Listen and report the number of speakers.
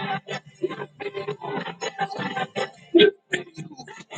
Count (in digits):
0